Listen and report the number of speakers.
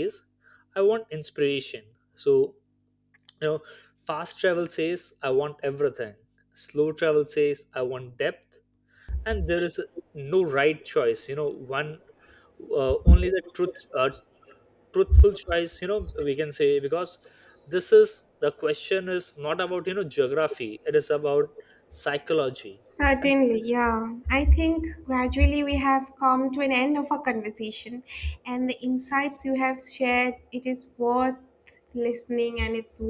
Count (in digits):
2